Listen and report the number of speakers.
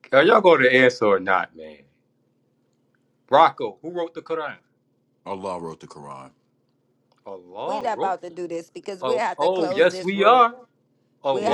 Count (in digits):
3